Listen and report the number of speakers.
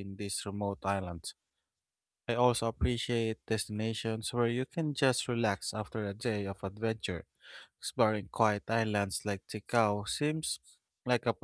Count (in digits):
1